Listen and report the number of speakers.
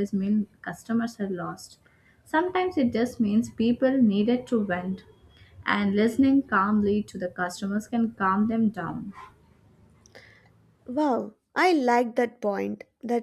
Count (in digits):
2